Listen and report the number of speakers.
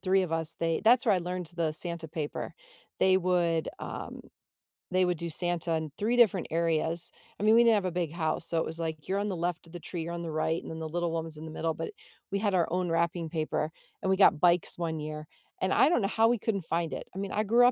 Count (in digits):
1